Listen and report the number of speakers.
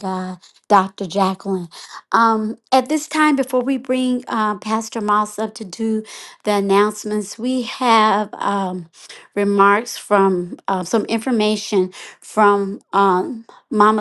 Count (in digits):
1